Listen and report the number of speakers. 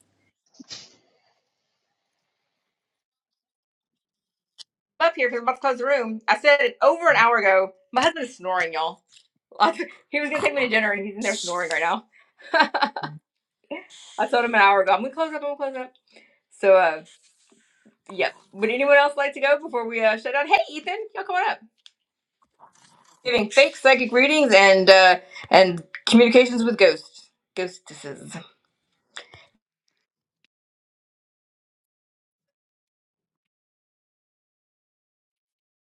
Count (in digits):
1